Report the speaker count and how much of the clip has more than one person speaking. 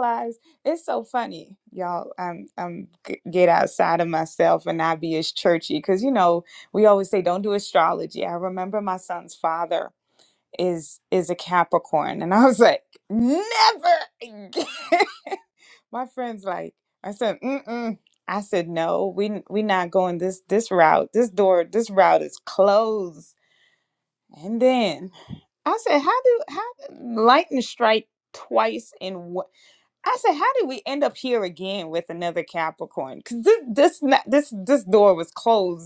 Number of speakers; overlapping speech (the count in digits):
1, no overlap